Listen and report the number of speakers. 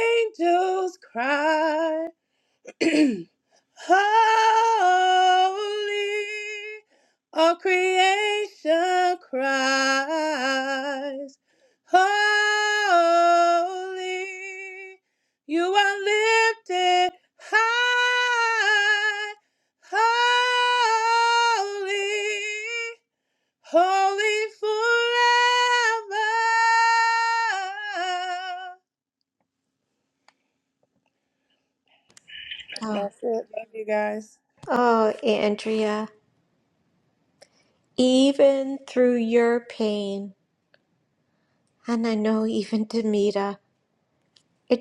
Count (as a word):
two